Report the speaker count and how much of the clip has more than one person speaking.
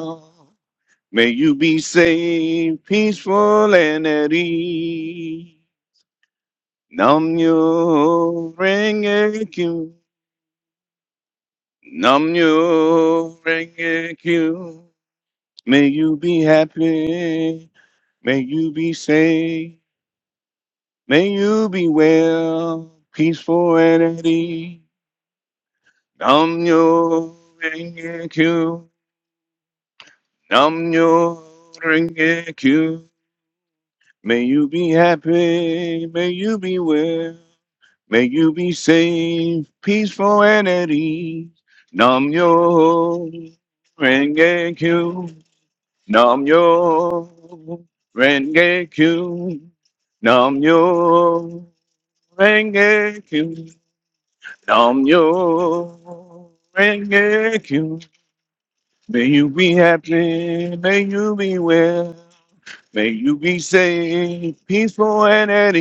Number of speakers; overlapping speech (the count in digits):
1, no overlap